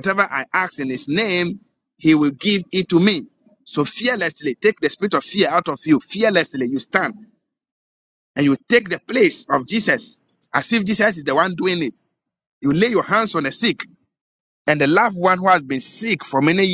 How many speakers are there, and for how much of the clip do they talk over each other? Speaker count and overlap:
1, no overlap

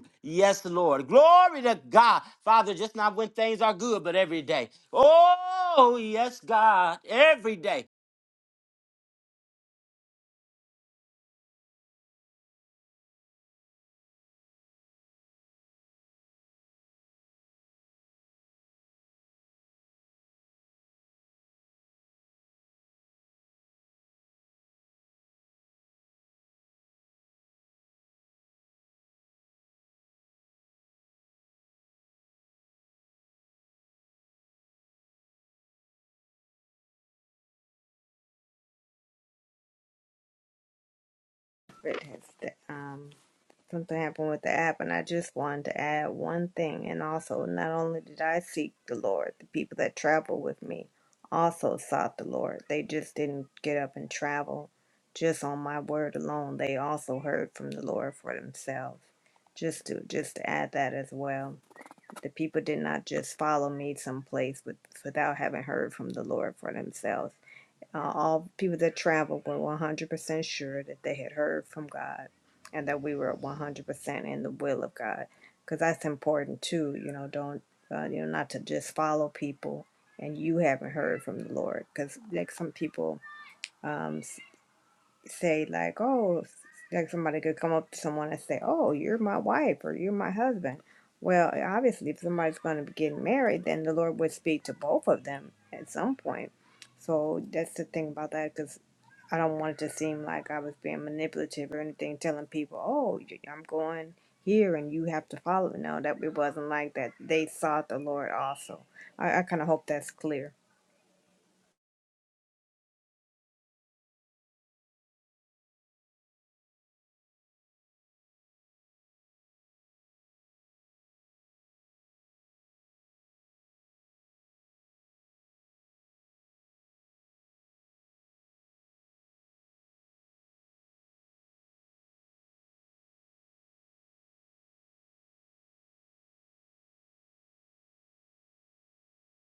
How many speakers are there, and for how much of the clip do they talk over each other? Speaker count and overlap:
2, no overlap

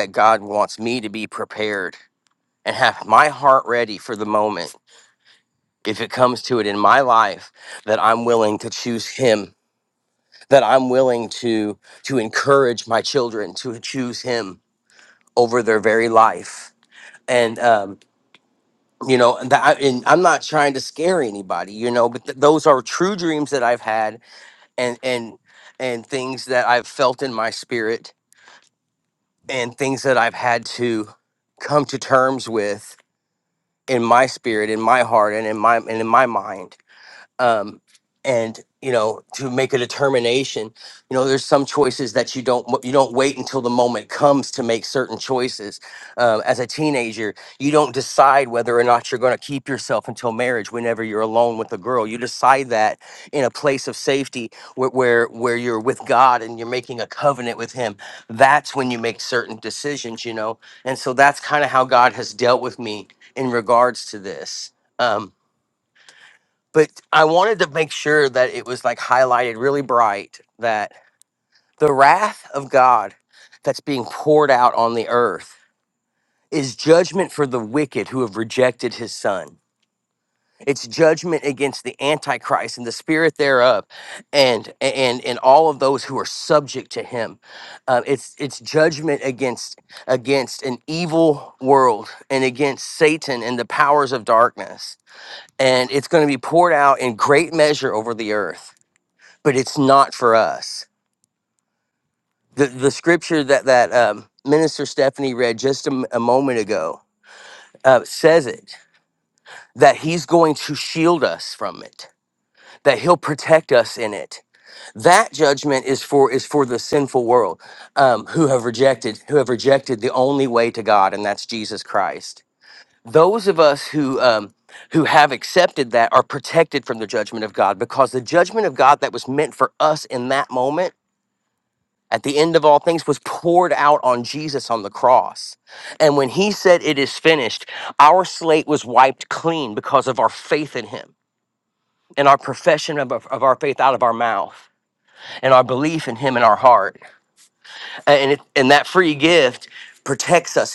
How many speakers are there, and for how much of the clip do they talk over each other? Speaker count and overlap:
1, no overlap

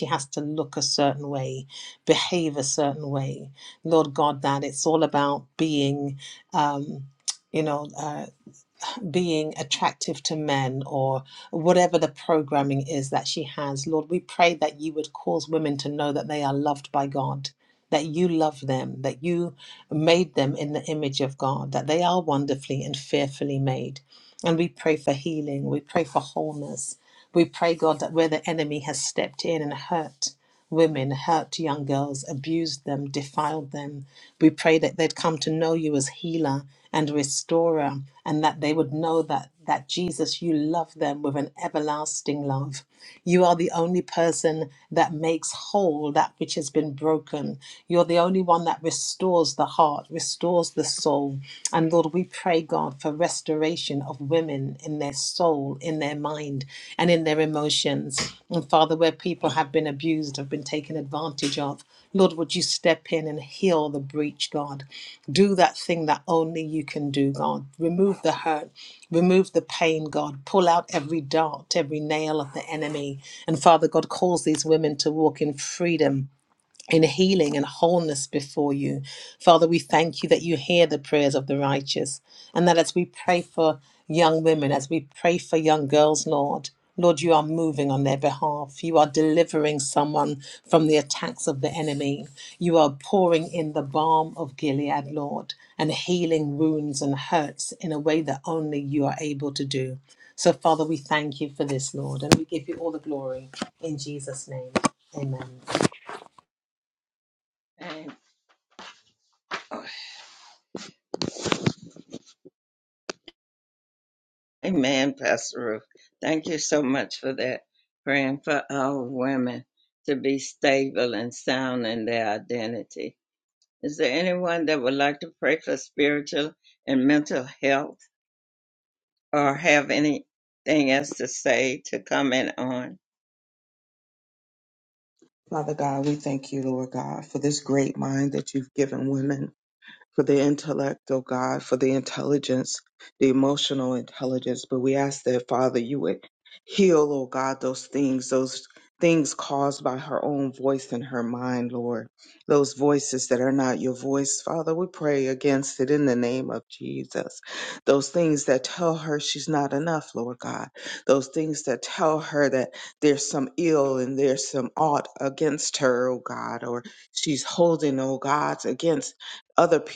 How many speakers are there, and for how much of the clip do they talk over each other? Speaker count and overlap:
3, no overlap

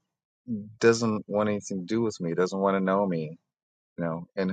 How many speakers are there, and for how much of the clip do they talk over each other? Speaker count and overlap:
1, no overlap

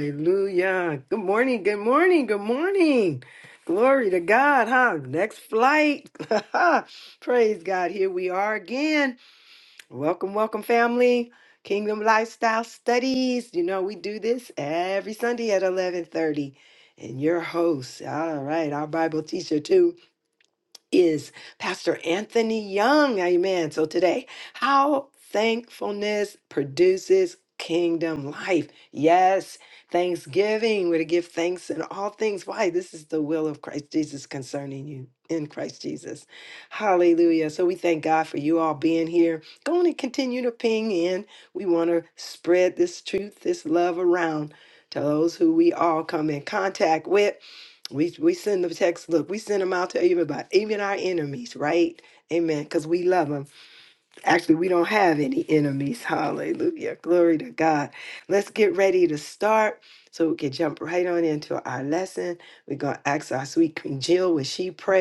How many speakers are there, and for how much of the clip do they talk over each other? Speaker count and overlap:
1, no overlap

